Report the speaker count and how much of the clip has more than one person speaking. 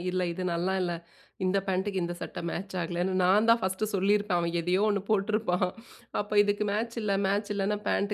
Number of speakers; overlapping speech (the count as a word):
one, no overlap